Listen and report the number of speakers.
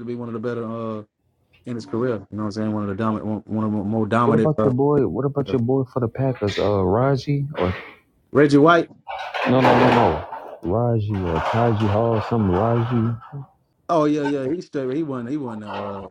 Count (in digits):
2